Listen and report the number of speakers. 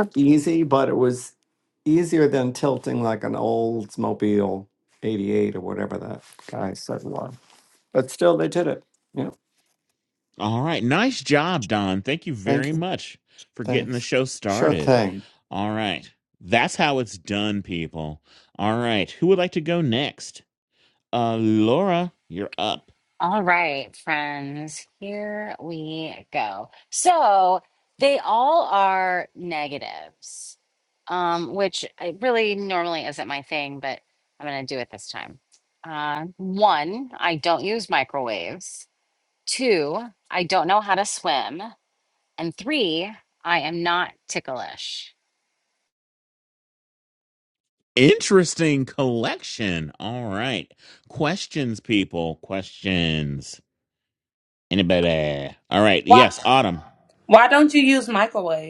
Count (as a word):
four